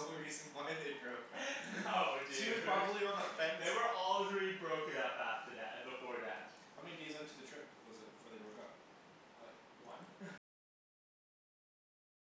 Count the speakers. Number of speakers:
two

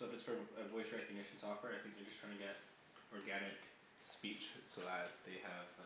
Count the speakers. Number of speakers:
one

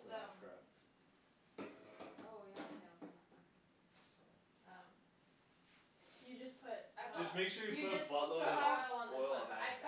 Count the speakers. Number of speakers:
three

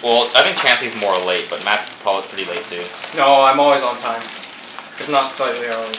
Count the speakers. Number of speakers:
two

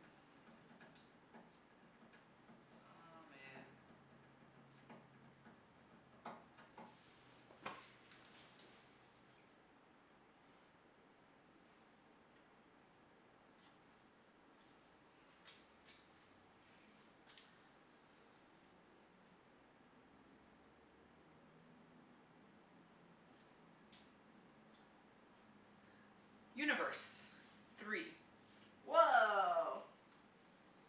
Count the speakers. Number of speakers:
two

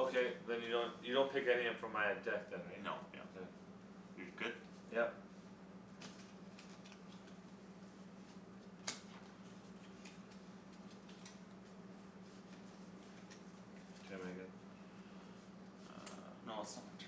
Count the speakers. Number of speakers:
two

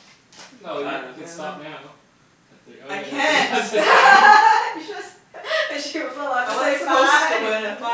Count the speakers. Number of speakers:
three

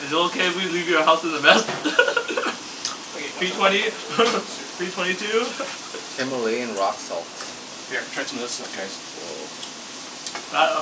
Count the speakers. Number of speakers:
three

